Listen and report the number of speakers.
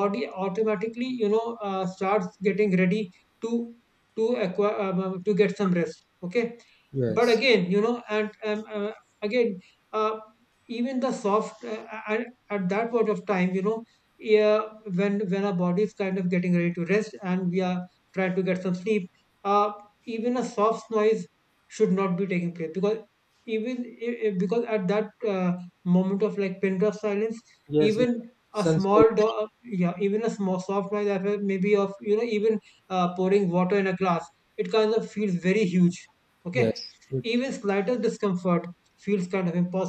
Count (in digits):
2